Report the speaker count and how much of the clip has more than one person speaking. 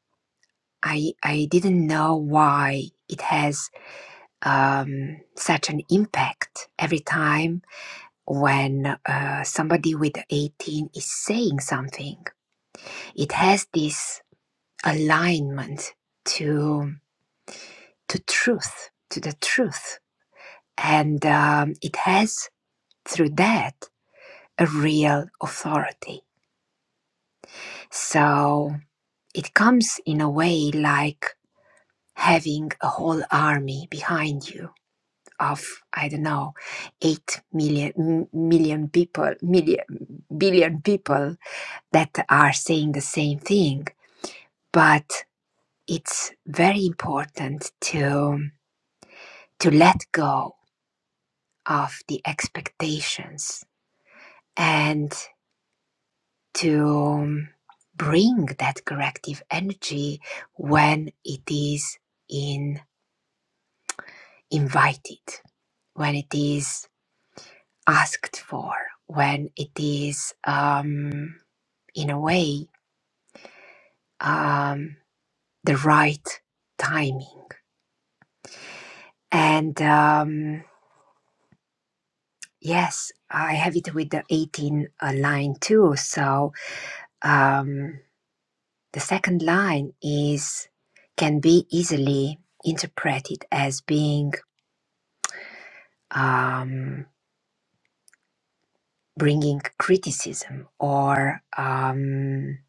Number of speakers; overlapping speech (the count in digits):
1, no overlap